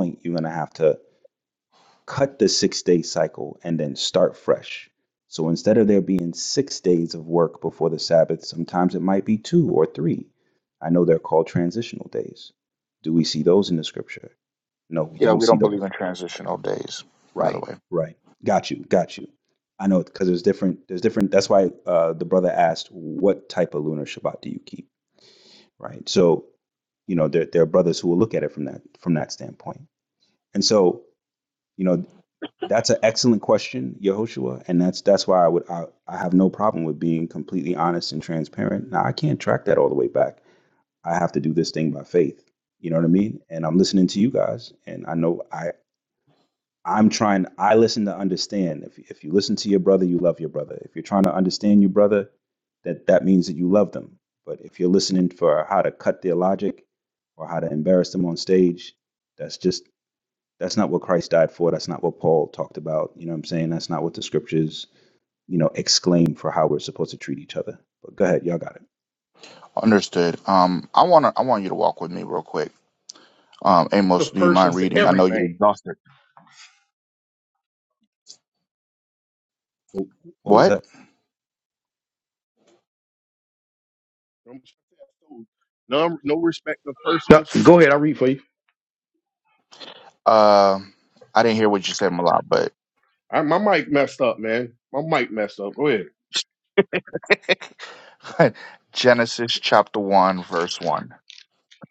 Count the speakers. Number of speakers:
4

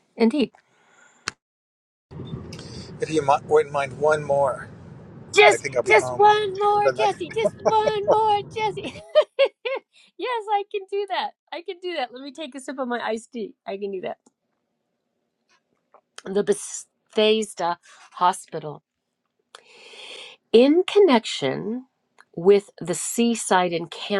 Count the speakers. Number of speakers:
2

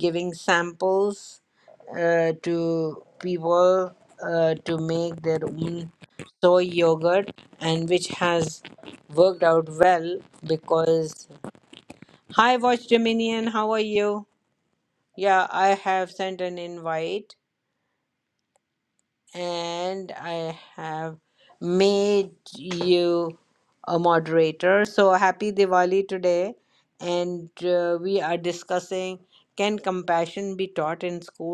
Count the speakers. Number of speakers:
1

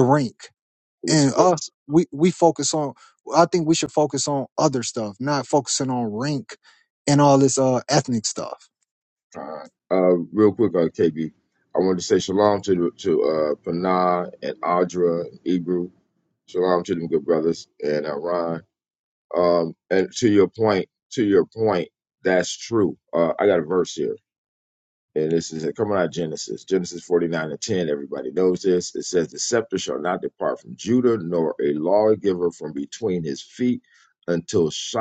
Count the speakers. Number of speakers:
2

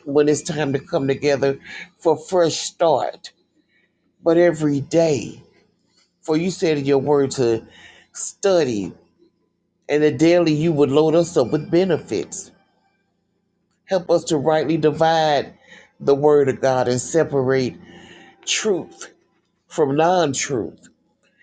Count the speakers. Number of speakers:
1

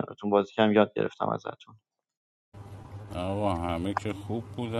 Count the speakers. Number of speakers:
2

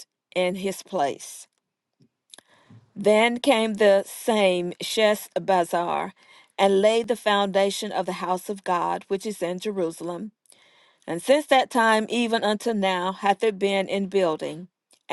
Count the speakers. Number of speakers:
1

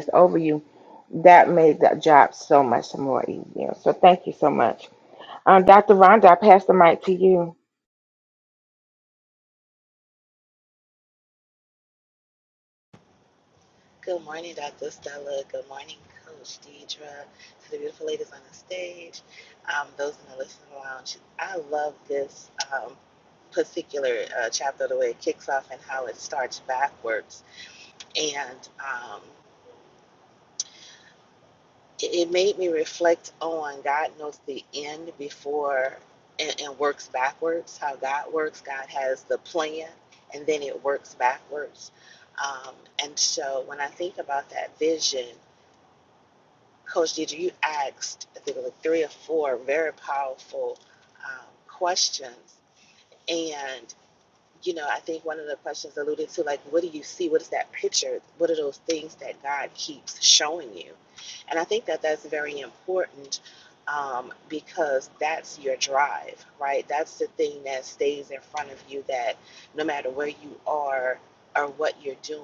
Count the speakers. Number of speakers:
2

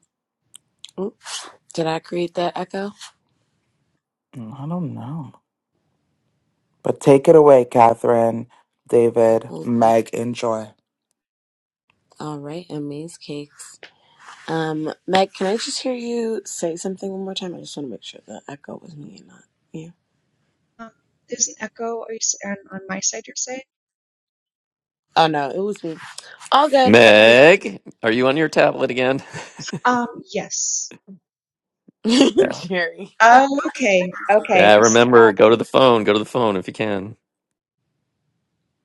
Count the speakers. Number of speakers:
4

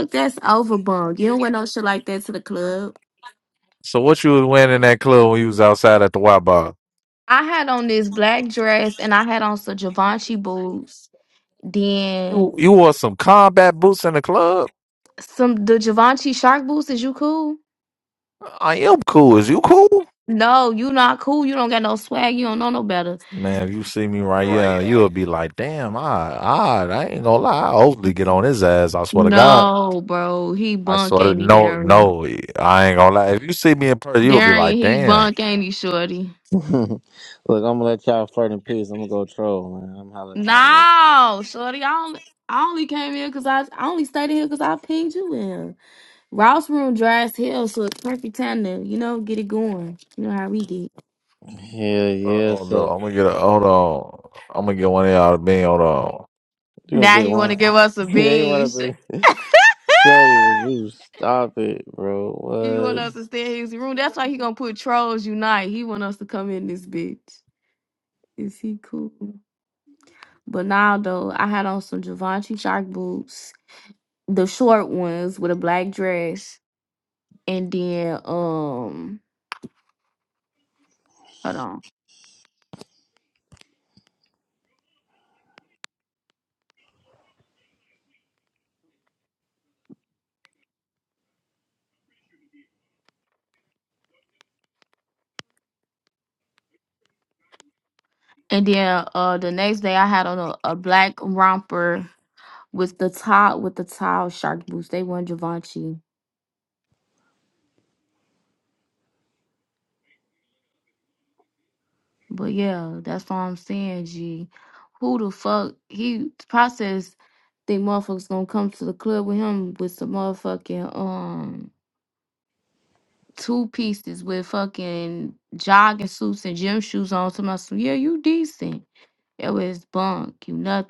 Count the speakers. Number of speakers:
3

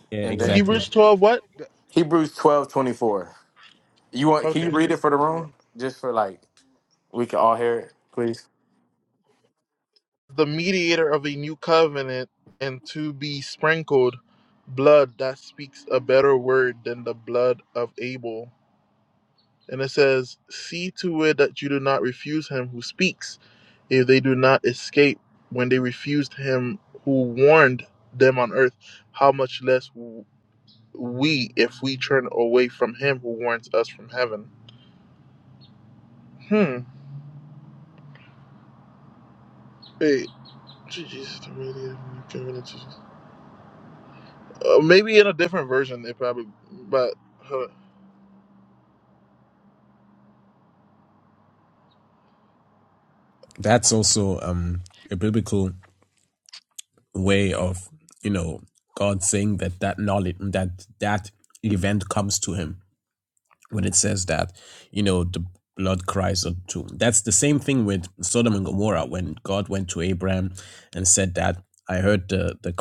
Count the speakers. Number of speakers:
3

